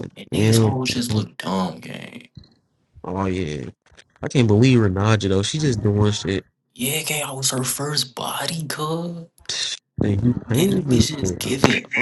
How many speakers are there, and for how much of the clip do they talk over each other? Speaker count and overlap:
2, about 13%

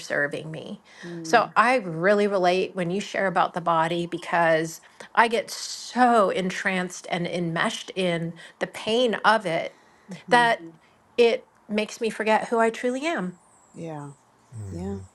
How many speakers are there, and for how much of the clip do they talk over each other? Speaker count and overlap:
2, about 2%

